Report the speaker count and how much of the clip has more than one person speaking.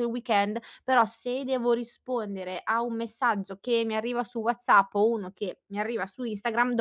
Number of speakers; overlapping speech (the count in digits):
1, no overlap